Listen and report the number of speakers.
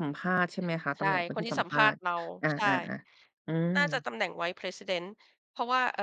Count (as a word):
two